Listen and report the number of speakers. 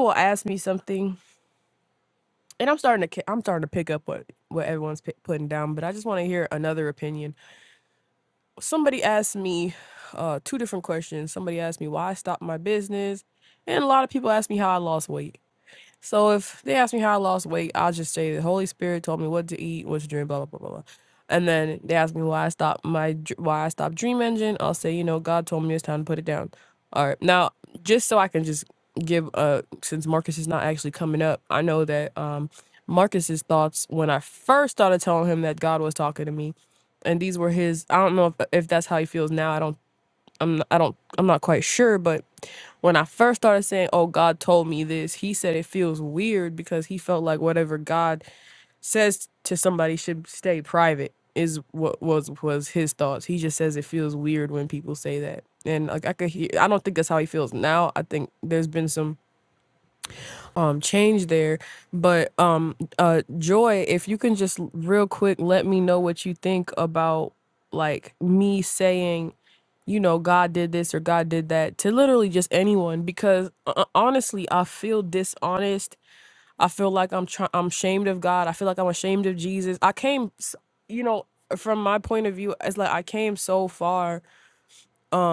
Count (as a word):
one